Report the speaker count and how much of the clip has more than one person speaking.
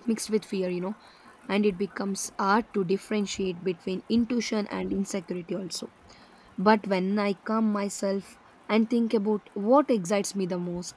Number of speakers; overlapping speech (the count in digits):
1, no overlap